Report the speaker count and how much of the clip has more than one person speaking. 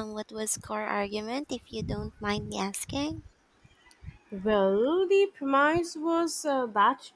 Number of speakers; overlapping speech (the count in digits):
2, no overlap